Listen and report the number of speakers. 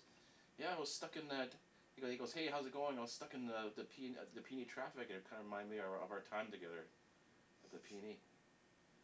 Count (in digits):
1